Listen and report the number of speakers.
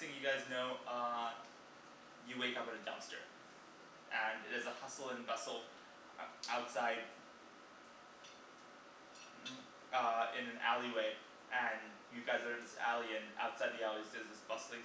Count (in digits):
1